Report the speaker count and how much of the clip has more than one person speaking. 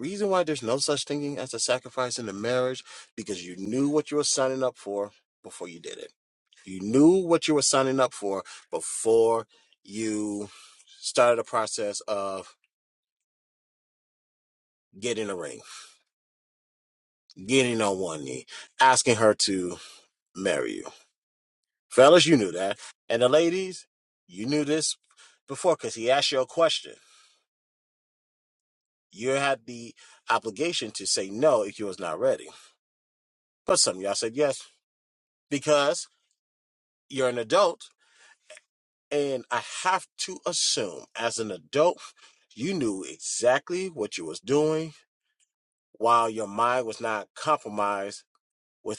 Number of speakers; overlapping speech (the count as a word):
one, no overlap